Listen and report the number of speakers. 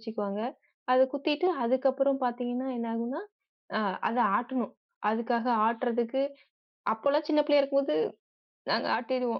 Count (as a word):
one